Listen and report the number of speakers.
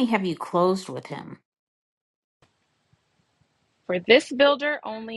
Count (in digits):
2